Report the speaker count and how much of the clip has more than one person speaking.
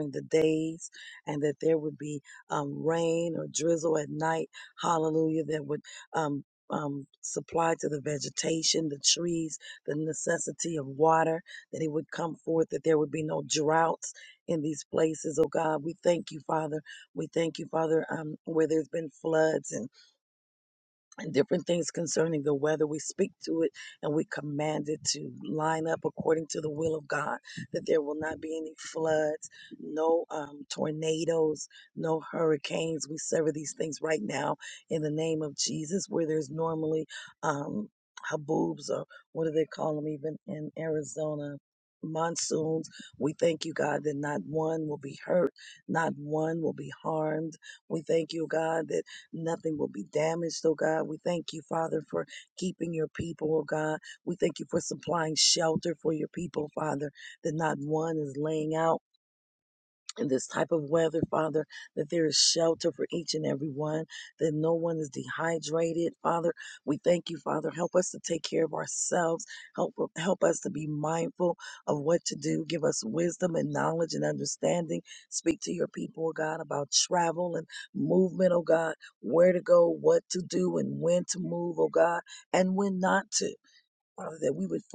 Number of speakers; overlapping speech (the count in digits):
1, no overlap